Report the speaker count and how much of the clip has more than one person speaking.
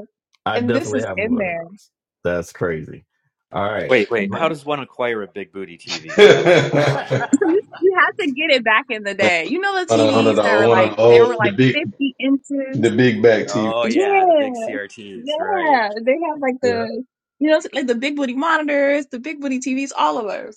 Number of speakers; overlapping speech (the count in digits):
4, about 26%